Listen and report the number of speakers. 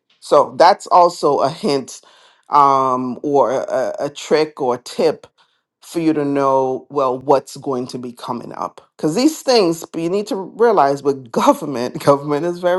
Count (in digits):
1